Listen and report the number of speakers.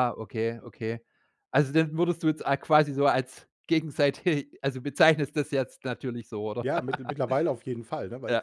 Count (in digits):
2